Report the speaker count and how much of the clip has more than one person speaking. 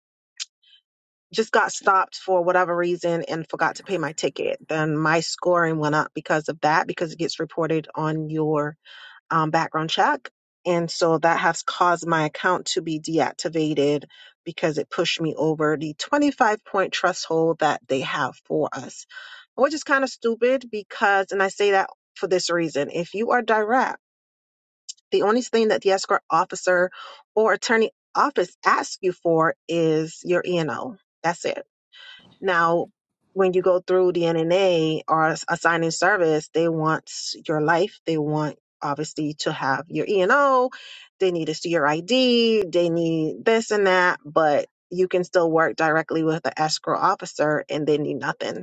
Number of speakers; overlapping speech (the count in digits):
1, no overlap